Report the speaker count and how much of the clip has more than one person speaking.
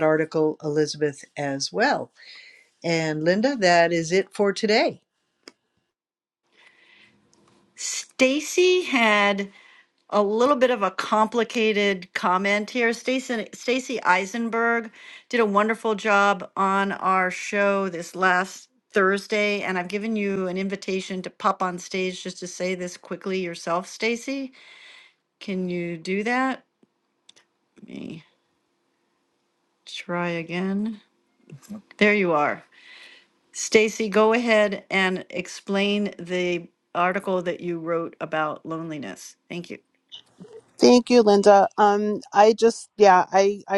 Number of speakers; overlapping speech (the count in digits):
3, no overlap